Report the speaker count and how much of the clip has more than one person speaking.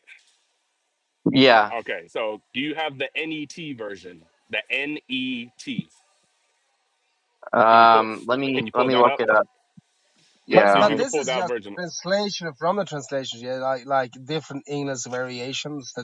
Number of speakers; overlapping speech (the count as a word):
three, about 14%